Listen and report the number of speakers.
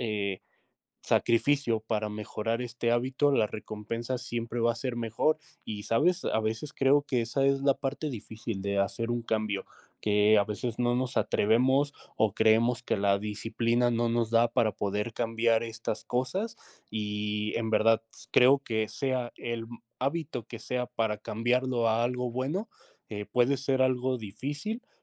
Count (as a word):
one